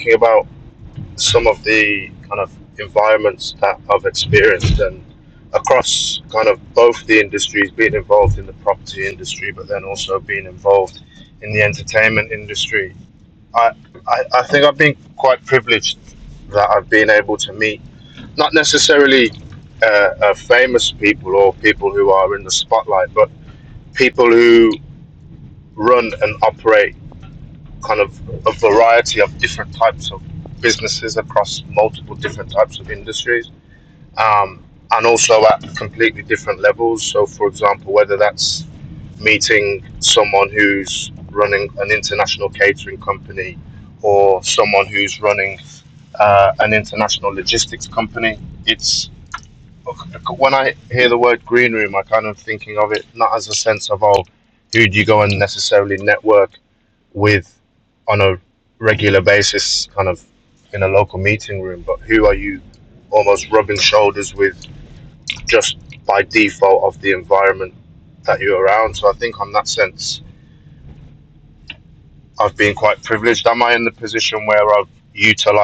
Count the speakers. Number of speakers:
1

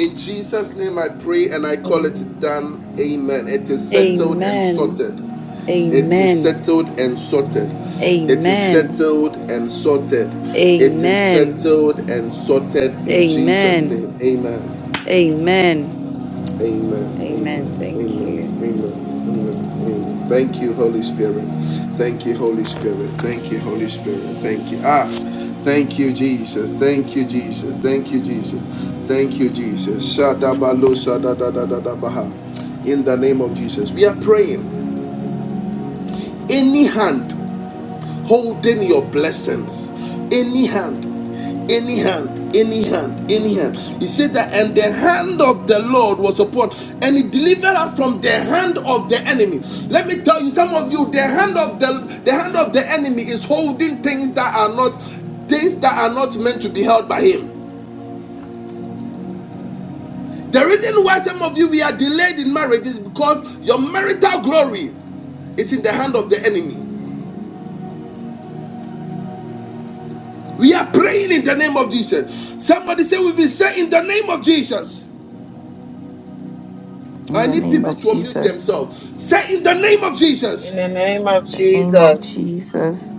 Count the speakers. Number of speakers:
3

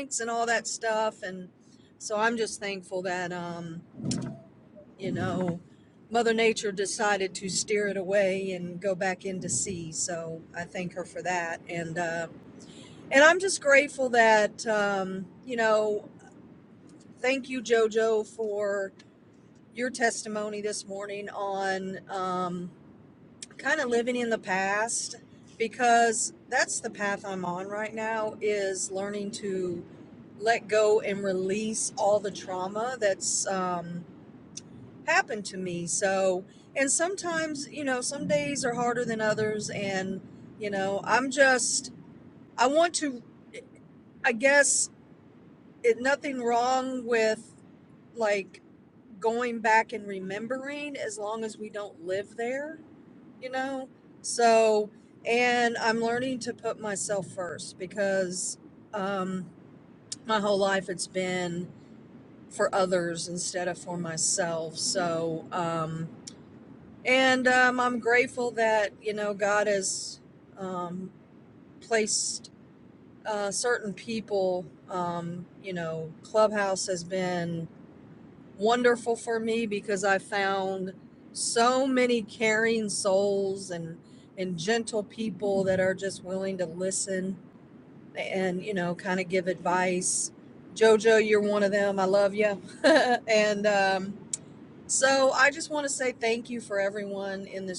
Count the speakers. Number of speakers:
1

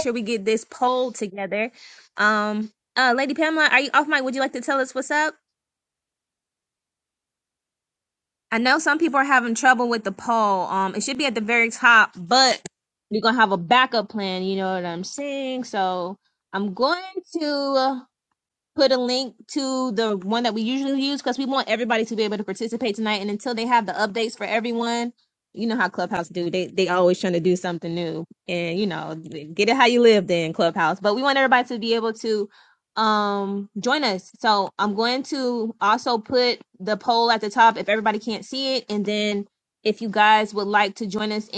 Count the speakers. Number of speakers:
1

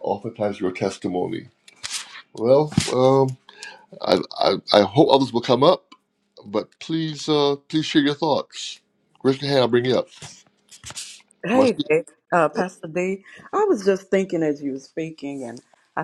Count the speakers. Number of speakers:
2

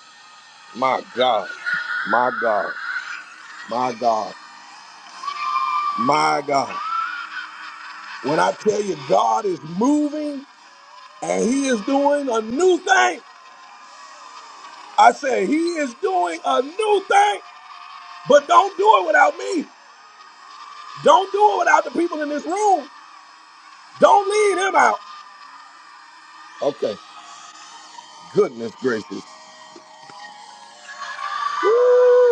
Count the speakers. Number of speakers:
1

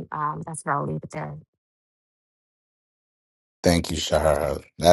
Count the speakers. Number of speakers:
2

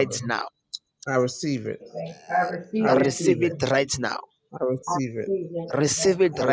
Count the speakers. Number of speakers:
3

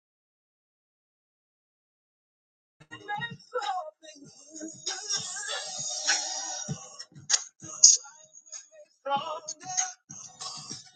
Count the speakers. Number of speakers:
0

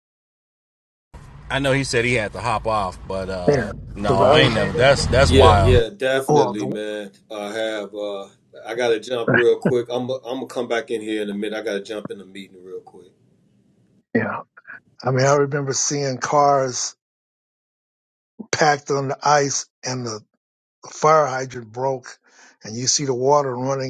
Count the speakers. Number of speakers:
3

